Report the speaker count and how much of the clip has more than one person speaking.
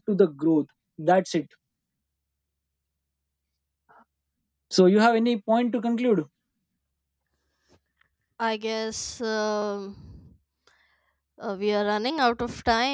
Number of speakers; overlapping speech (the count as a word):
two, no overlap